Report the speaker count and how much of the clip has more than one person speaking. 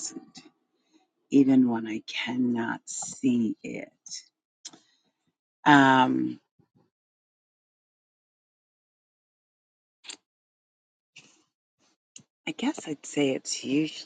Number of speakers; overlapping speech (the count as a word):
one, no overlap